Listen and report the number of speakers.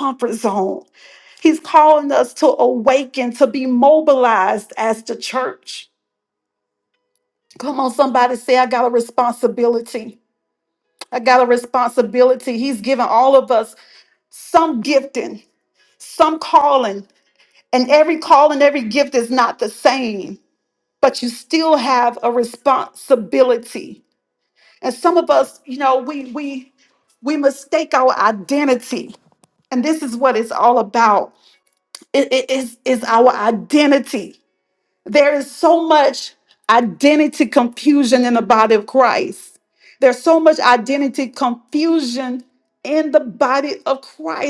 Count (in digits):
1